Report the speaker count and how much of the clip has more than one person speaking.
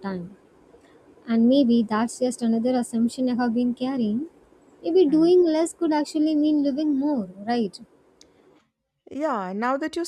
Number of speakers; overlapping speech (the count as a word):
two, about 1%